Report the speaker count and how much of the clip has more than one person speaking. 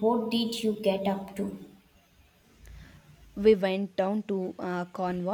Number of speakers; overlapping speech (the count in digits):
2, no overlap